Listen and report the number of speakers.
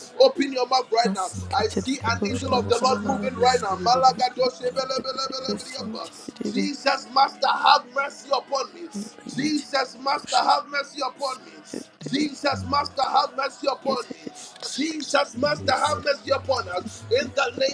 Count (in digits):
3